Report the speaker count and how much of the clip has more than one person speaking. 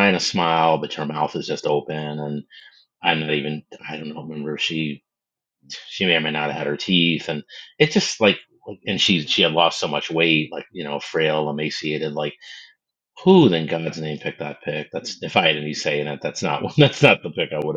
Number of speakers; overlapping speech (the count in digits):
1, no overlap